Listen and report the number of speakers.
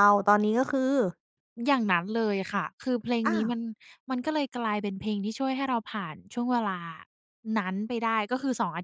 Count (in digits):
2